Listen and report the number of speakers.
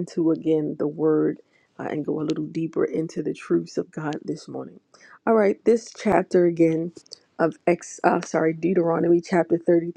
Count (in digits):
1